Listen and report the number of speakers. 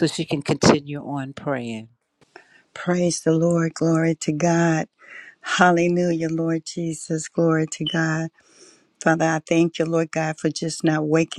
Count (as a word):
two